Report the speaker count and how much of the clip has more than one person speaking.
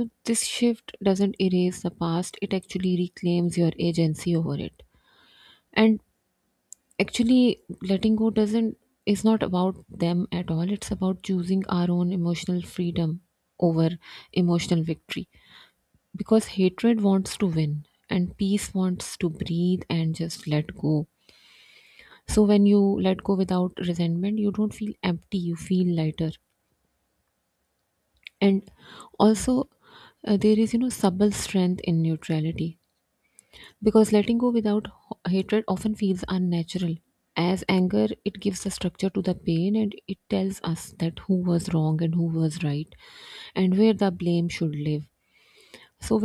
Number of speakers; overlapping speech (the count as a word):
one, no overlap